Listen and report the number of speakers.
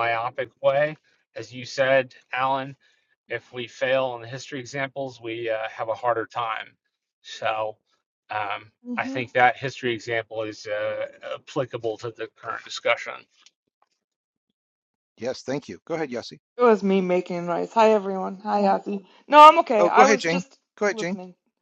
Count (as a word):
three